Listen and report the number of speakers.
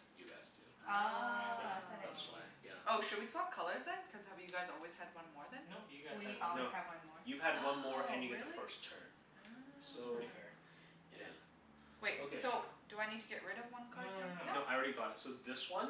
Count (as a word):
four